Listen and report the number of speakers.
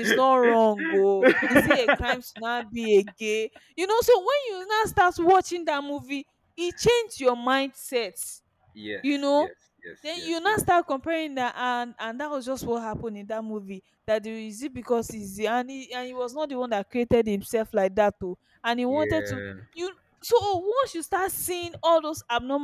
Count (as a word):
two